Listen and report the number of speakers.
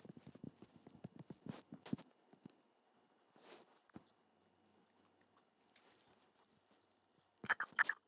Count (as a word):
zero